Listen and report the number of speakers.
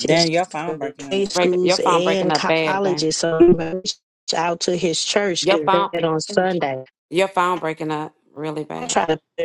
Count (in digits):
3